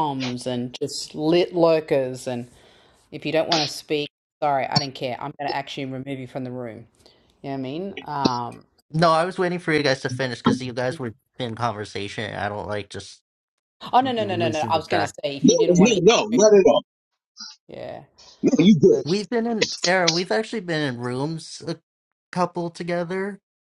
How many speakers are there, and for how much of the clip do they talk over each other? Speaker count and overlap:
3, about 5%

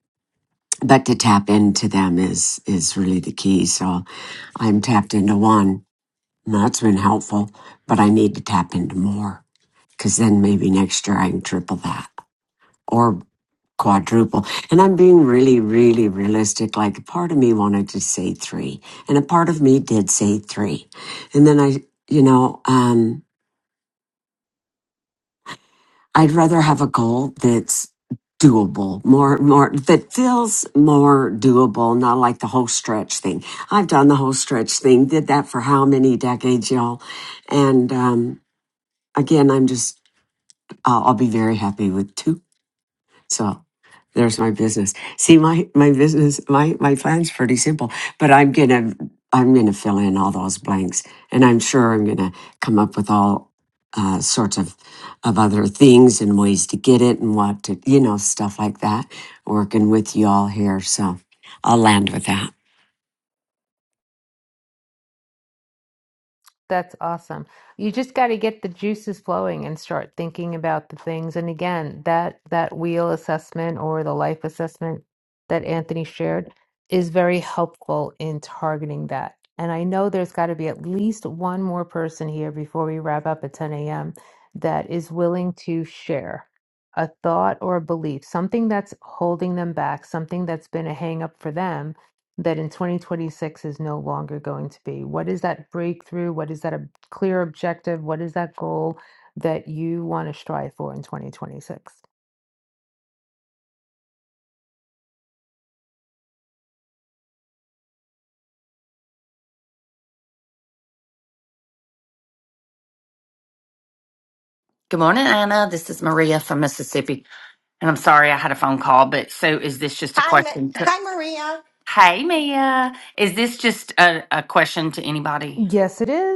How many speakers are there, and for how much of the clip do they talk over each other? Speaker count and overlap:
4, about 1%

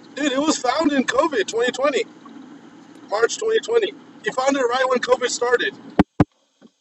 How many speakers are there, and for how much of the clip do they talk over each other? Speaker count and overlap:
1, no overlap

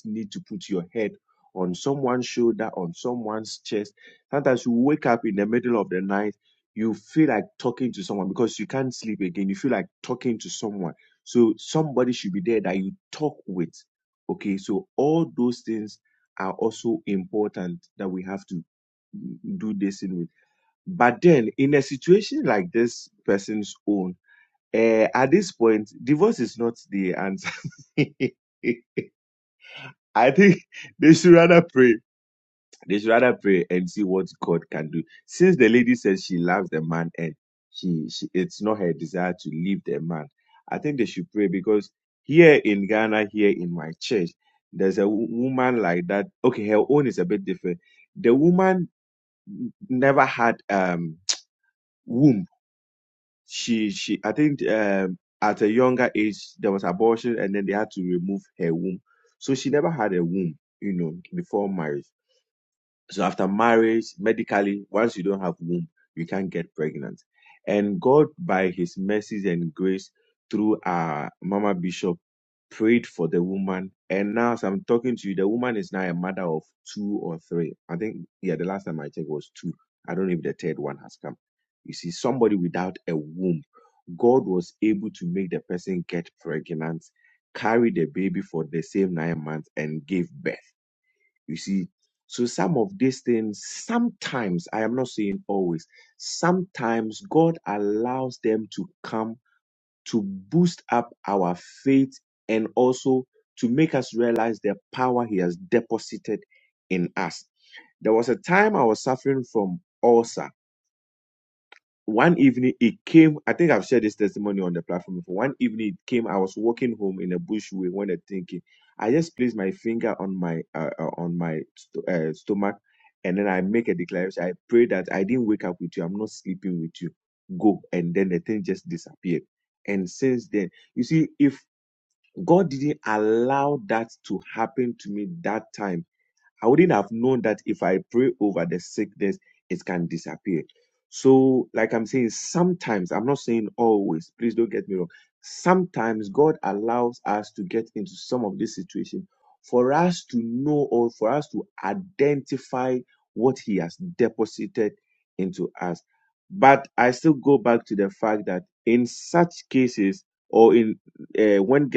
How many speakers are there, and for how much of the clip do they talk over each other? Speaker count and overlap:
1, no overlap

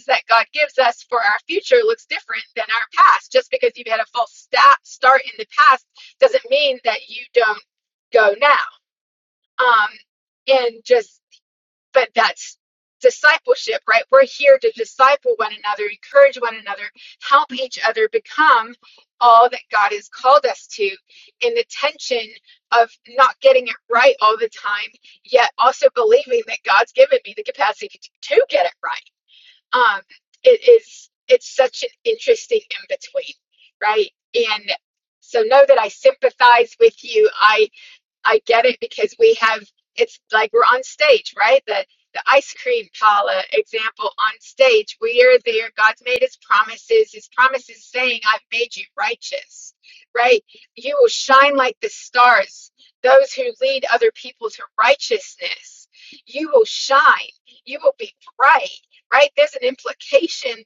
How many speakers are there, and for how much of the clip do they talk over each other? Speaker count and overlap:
1, no overlap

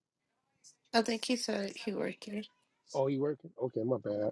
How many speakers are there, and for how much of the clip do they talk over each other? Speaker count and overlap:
2, no overlap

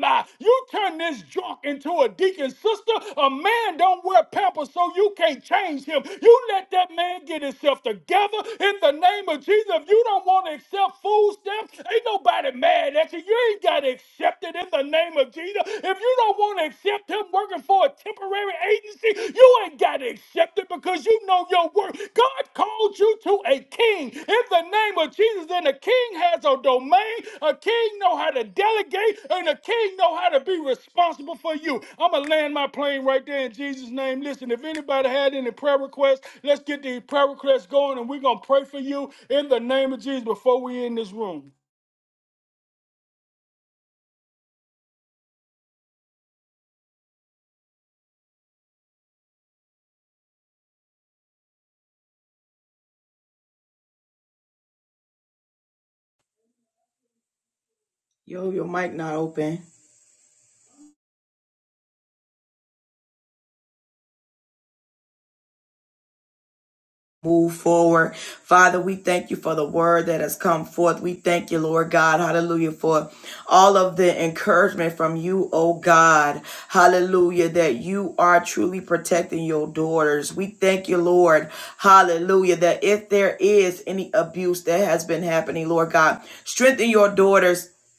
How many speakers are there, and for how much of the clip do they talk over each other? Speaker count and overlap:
2, no overlap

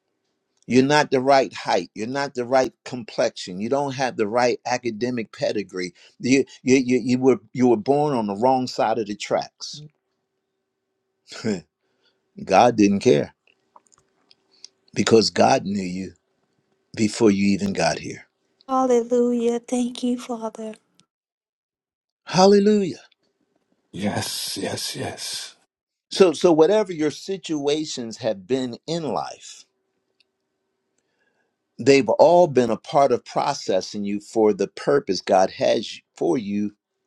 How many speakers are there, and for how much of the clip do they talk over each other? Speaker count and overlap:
3, no overlap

